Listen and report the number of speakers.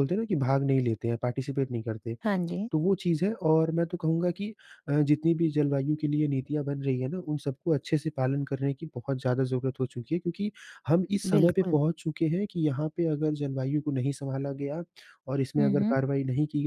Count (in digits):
2